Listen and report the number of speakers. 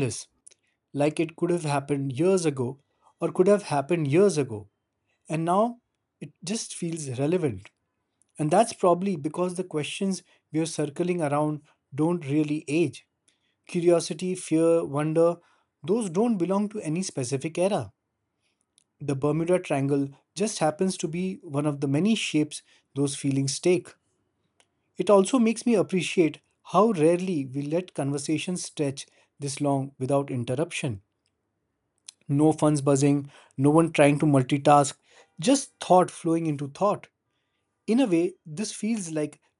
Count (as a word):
one